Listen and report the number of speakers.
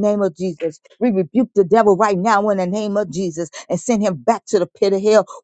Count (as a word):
one